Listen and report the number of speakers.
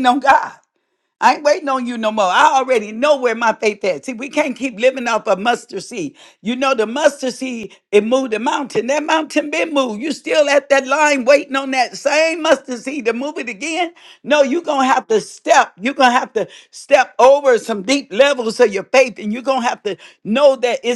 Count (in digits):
1